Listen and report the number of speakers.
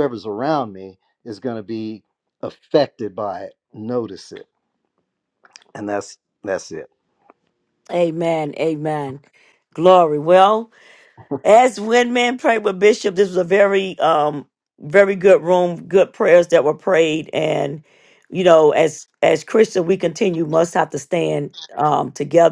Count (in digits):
2